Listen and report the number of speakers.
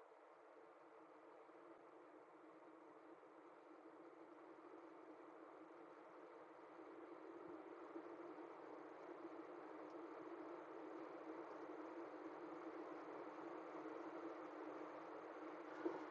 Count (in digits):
0